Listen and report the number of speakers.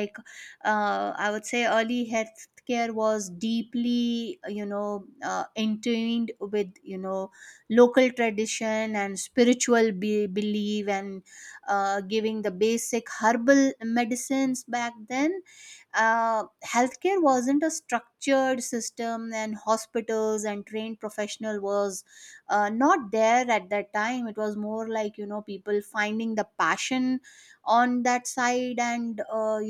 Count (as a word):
one